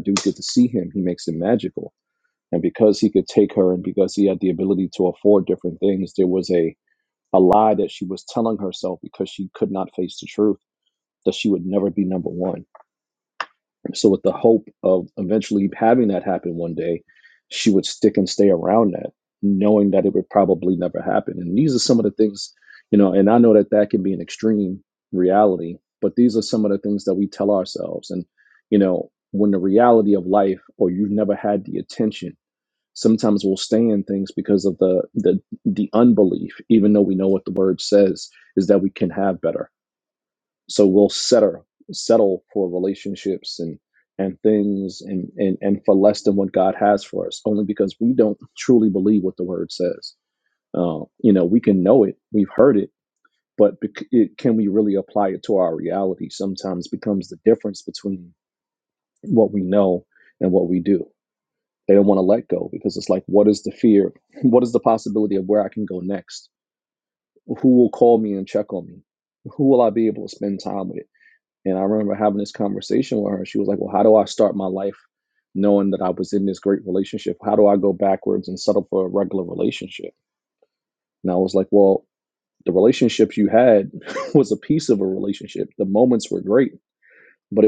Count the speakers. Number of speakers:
one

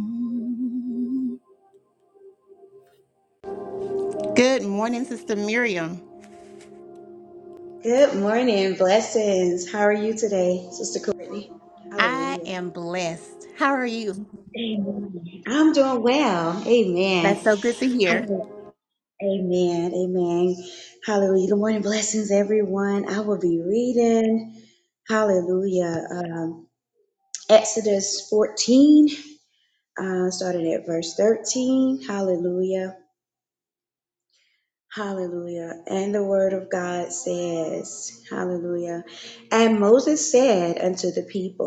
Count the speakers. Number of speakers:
two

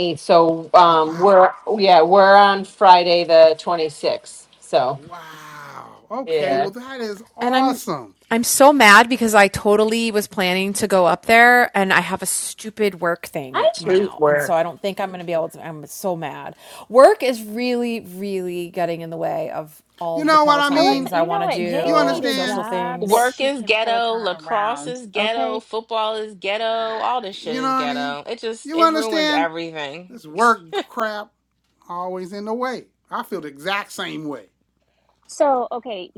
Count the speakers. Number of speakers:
five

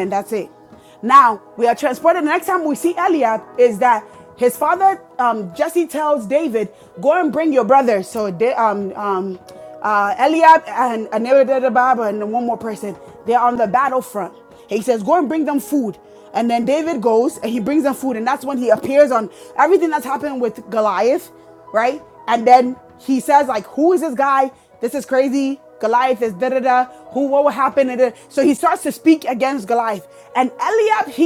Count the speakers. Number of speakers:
one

